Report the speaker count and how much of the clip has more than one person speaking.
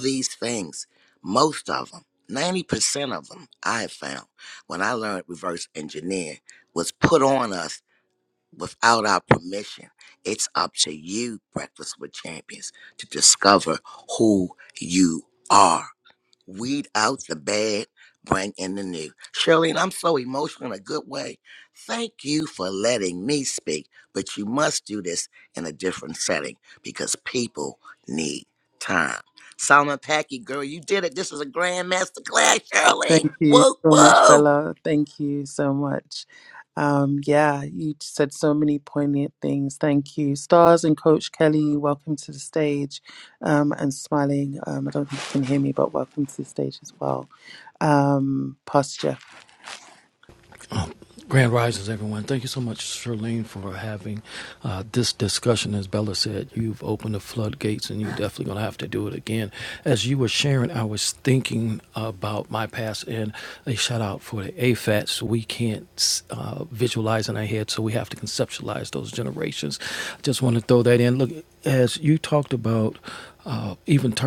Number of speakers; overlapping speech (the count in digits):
3, about 2%